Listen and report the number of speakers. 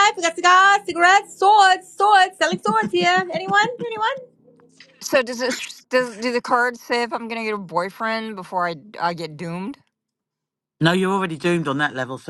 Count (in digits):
3